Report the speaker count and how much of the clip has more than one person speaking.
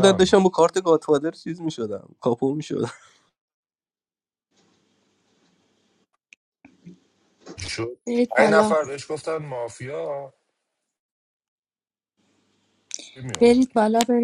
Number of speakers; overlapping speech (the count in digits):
3, about 6%